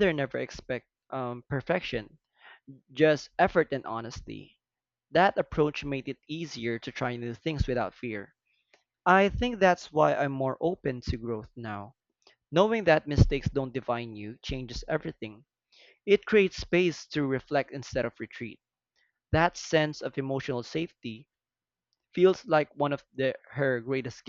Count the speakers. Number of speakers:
1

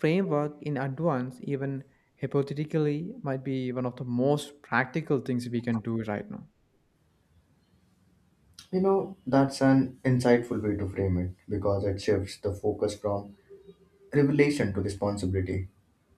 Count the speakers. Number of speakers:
2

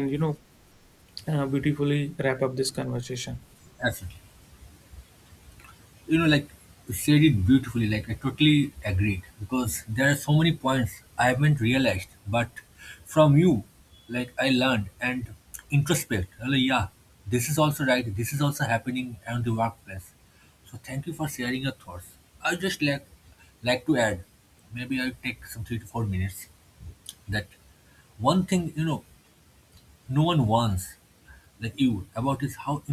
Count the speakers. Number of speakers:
2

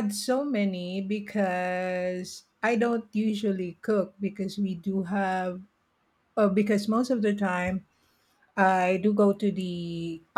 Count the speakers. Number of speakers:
1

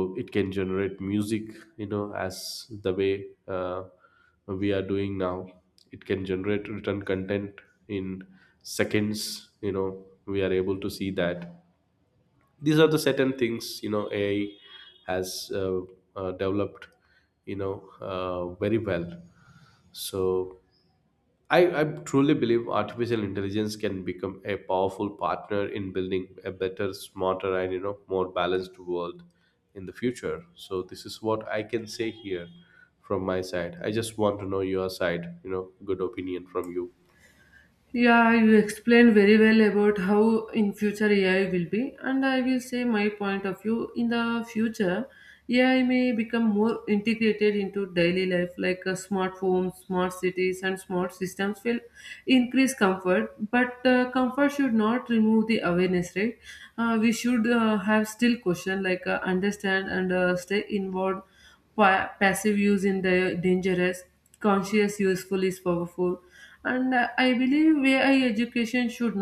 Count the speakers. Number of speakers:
2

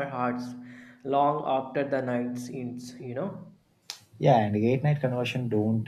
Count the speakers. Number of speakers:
2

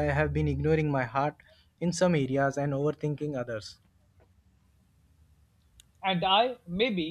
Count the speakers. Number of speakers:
2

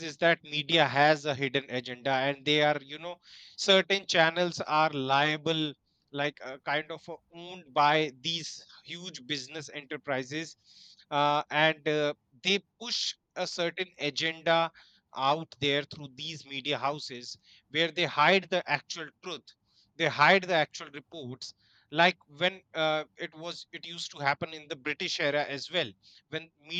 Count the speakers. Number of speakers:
1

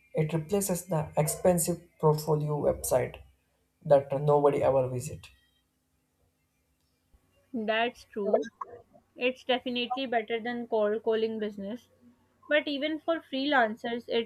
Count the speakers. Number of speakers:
2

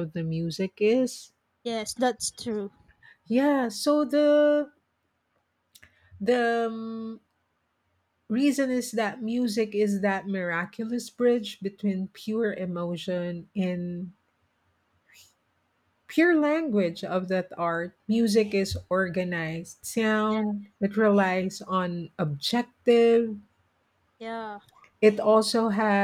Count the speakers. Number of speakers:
2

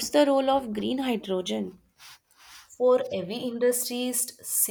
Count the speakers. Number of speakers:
2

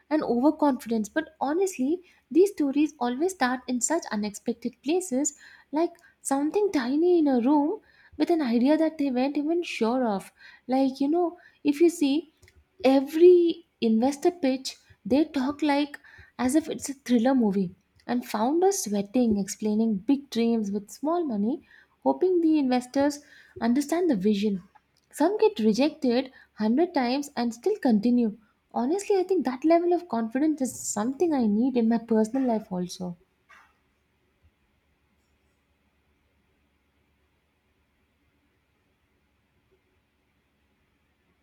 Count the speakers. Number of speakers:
1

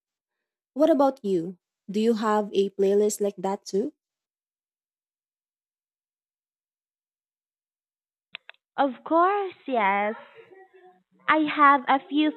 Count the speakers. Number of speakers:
2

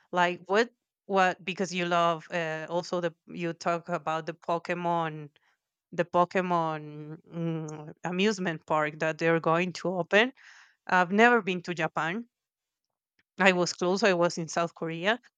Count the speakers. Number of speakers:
1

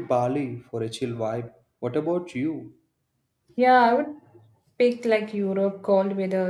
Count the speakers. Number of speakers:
2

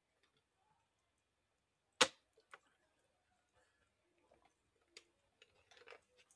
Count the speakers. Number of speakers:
0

